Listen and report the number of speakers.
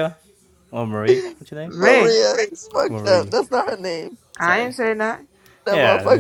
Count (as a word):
three